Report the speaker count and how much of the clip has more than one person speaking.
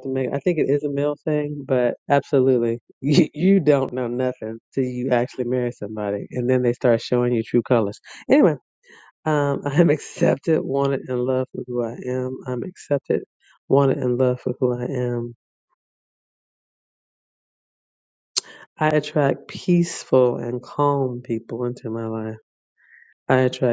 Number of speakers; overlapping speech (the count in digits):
1, no overlap